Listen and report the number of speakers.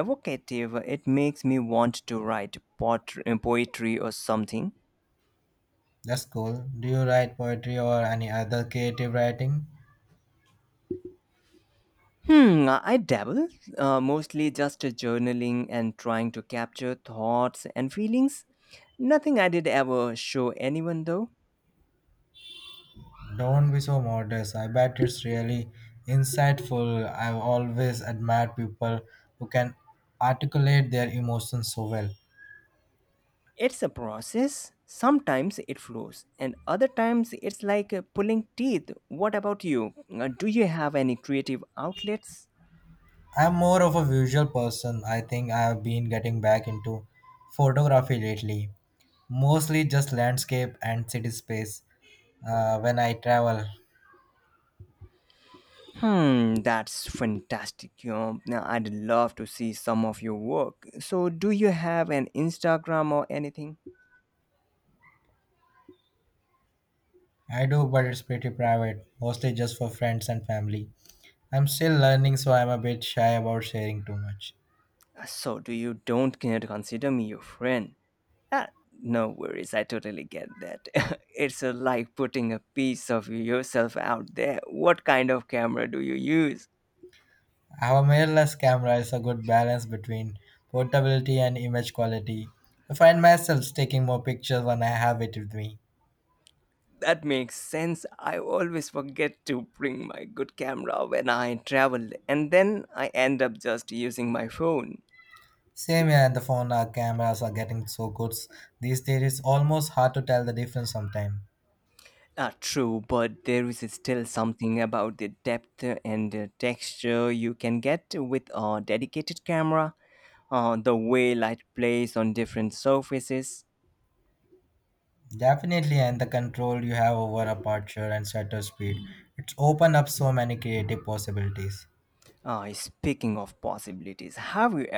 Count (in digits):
2